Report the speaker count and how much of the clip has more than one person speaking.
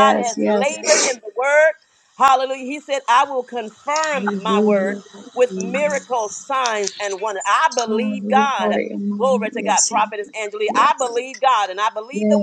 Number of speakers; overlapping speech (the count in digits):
2, about 37%